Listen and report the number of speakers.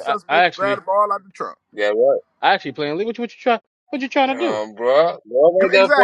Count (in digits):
3